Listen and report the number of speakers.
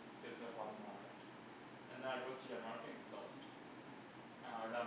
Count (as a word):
one